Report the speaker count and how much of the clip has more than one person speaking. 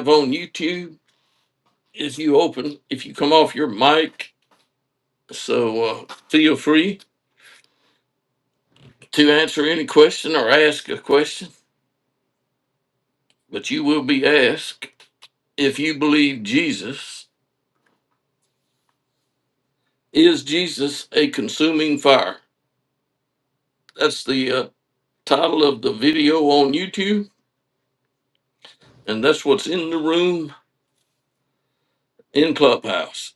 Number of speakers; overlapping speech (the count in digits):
1, no overlap